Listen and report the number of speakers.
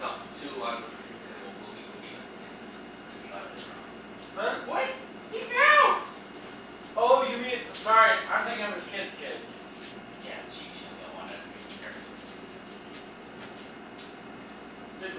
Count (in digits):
3